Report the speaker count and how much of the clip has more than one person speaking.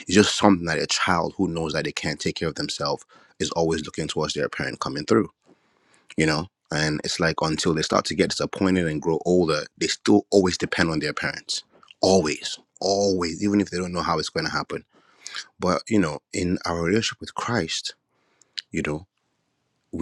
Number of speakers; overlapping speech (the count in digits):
1, no overlap